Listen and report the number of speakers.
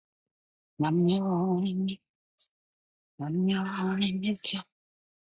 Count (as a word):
one